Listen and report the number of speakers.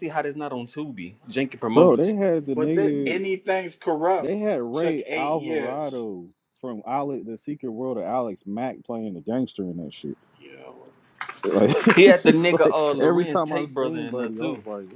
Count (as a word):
three